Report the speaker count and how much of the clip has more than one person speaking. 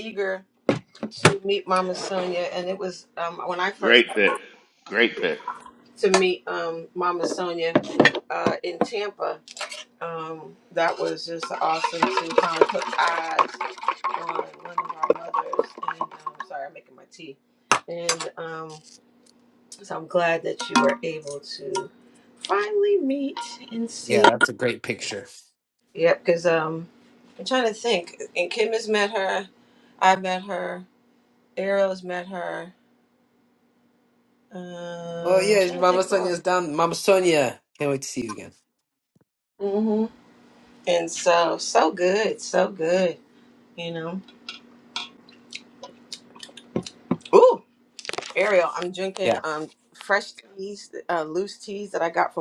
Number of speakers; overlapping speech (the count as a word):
three, about 4%